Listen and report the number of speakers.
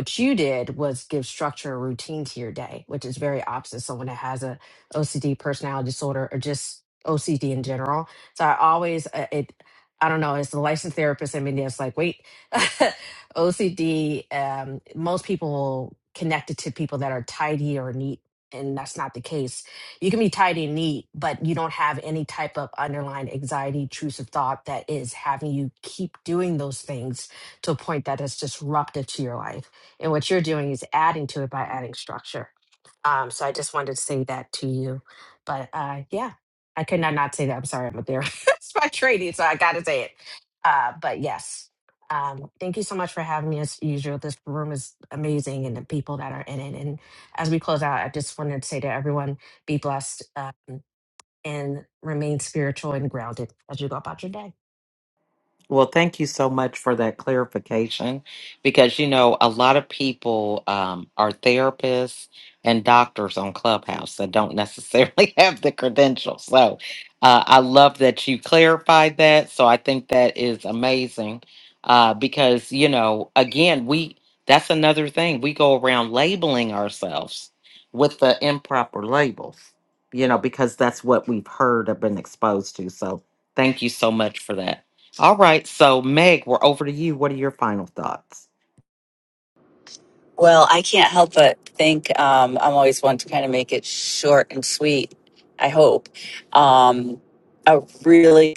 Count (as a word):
three